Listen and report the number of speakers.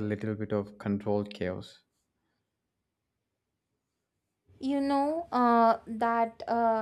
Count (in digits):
2